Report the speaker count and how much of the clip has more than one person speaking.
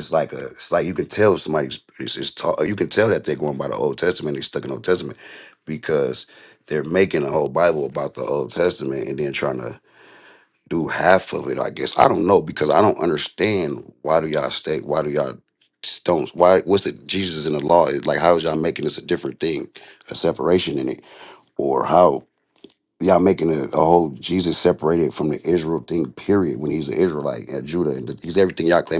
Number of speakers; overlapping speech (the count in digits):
1, no overlap